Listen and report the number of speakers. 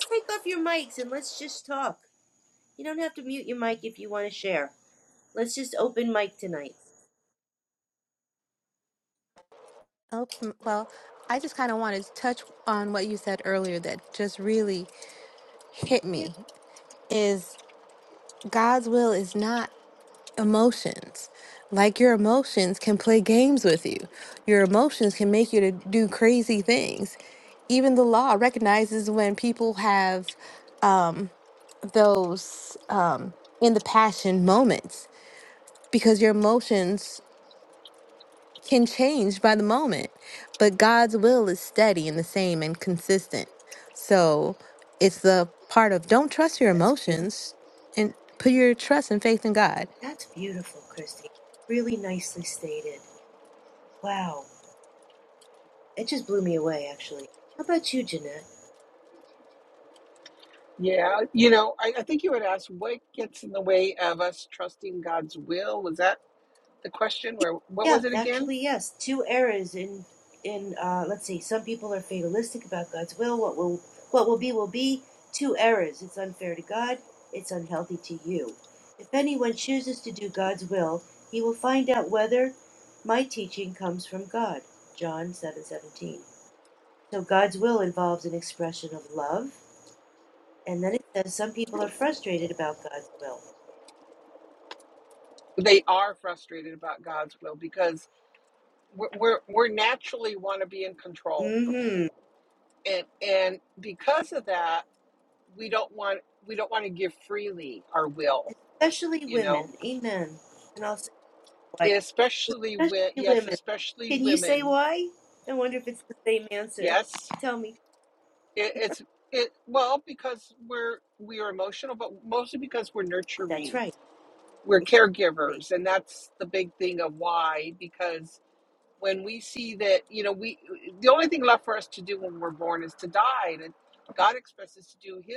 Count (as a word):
three